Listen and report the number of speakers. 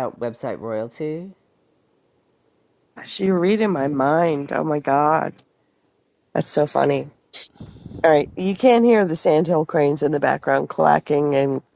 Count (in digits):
2